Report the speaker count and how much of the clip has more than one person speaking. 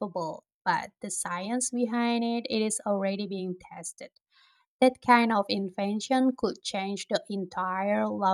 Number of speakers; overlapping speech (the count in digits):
1, no overlap